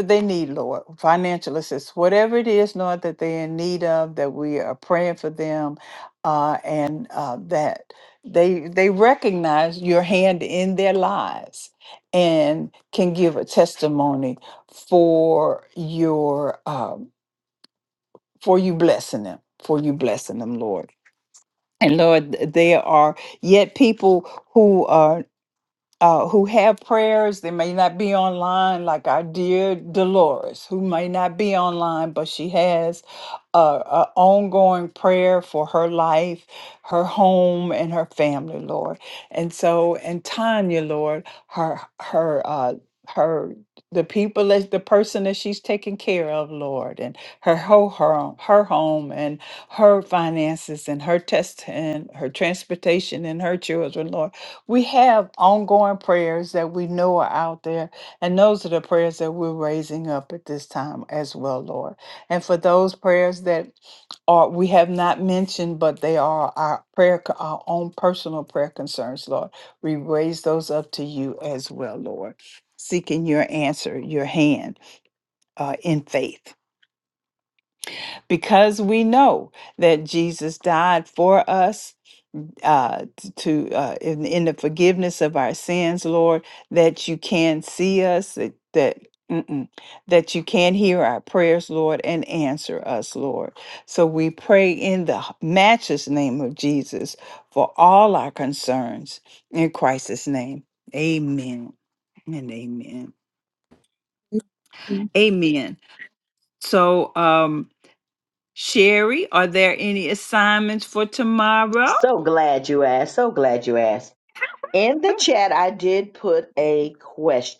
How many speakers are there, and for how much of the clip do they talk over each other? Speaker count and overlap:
two, no overlap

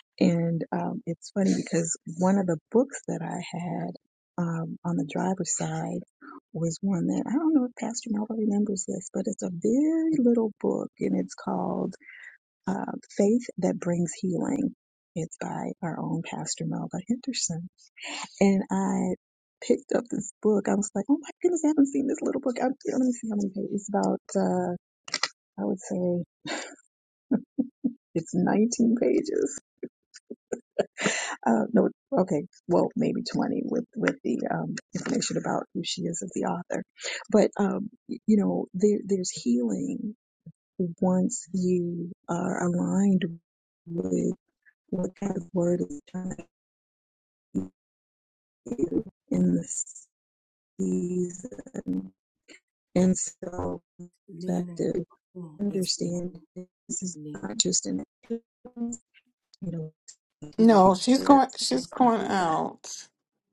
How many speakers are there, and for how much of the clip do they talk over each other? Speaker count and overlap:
two, no overlap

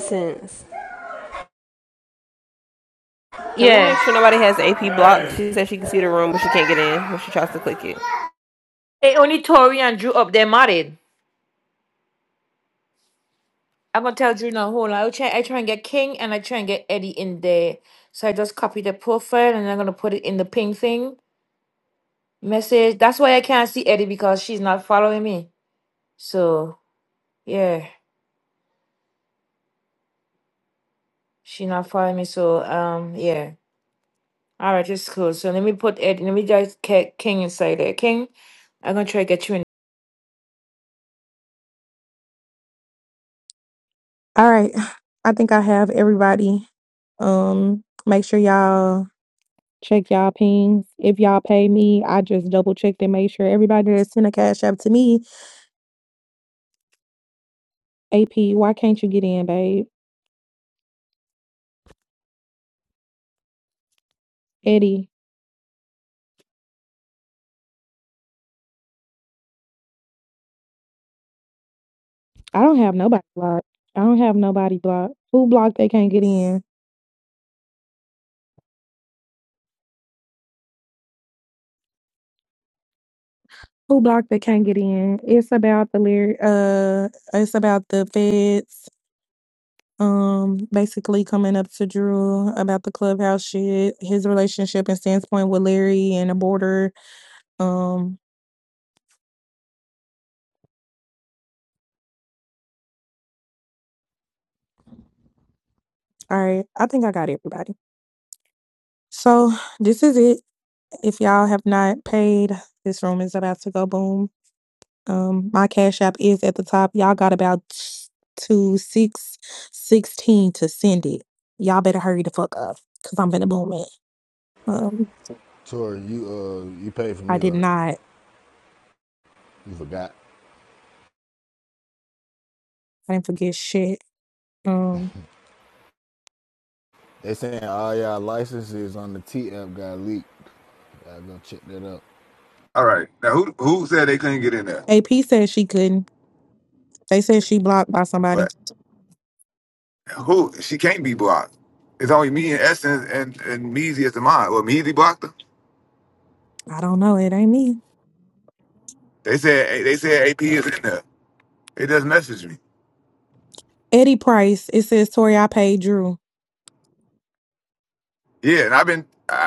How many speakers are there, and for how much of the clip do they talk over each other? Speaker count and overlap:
five, about 1%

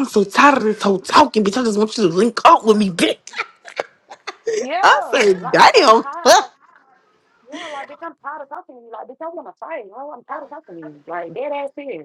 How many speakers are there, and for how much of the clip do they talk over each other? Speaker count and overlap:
two, about 9%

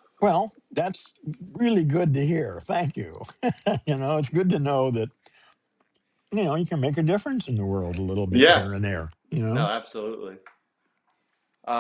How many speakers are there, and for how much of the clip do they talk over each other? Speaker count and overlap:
two, about 5%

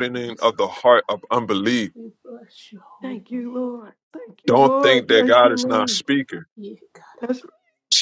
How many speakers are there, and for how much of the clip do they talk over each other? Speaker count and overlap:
three, about 30%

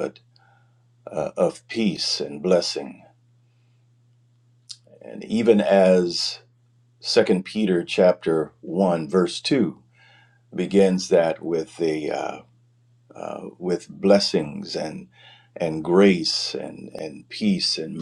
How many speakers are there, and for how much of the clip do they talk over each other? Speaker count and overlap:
one, no overlap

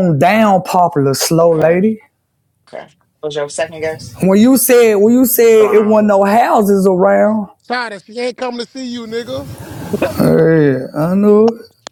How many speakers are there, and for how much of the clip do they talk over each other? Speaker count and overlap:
three, about 7%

